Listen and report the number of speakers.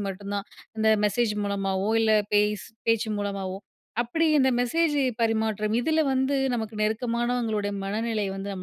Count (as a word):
one